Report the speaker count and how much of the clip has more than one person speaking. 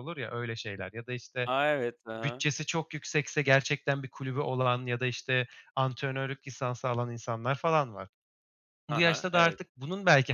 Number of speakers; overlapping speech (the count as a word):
two, about 8%